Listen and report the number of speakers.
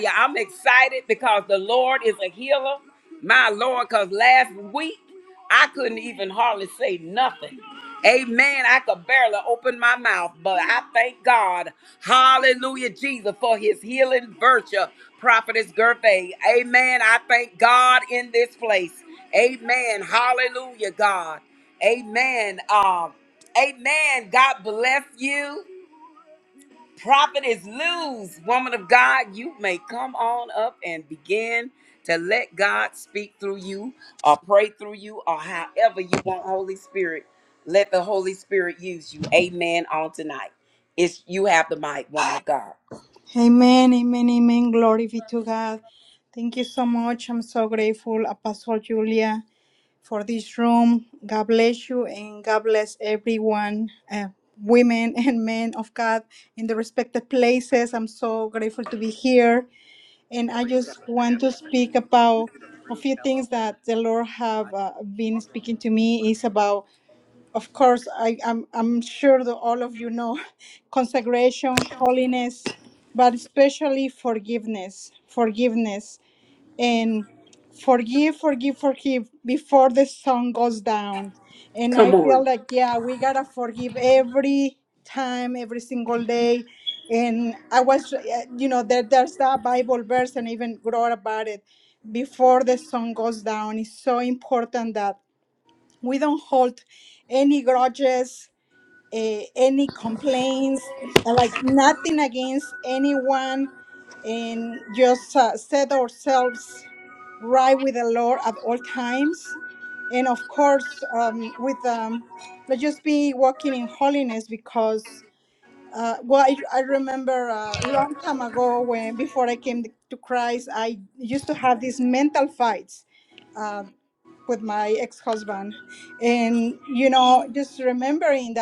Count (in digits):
2